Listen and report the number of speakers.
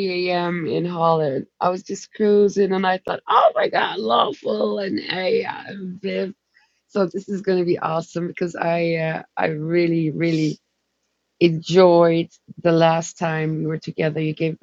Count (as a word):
one